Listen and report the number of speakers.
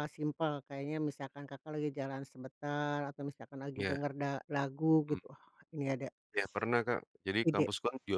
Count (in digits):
2